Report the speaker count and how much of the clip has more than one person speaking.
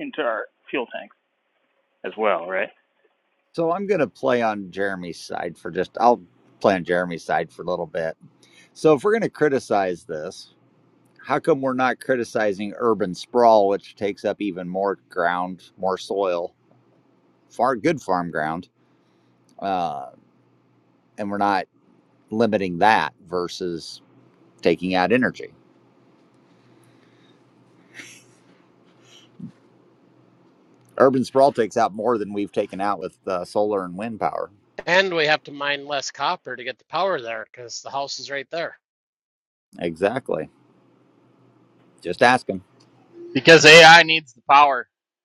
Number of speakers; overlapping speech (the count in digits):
4, no overlap